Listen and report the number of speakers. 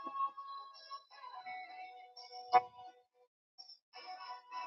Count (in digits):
0